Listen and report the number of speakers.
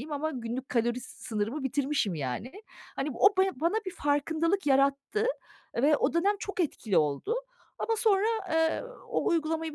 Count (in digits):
1